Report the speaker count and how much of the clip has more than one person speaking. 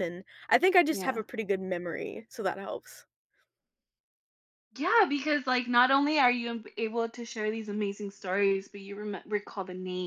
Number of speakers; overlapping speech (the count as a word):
two, about 3%